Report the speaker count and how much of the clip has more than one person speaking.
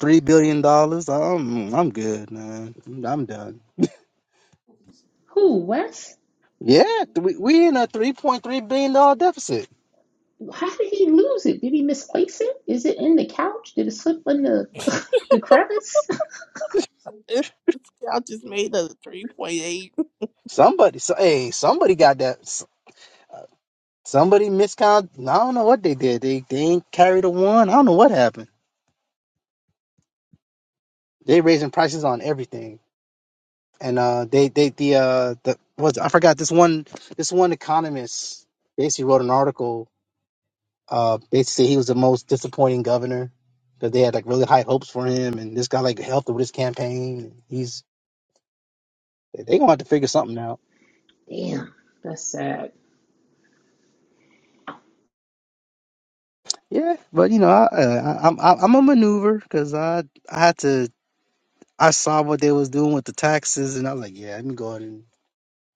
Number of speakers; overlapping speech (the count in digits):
3, no overlap